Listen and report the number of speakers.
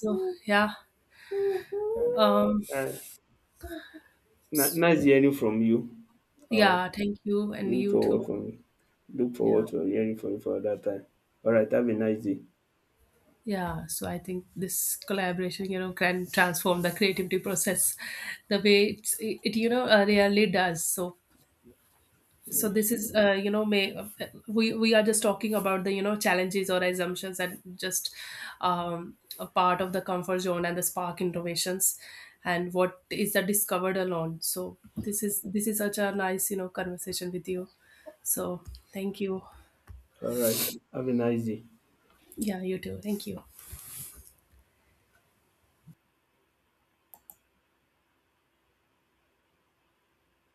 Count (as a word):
two